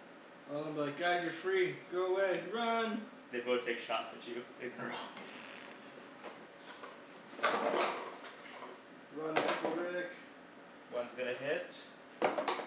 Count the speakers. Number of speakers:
three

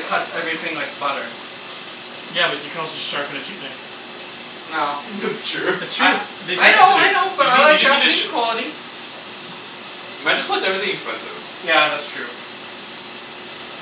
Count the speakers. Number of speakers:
three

